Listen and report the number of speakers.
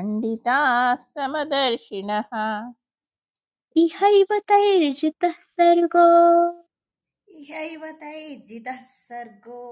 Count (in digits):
3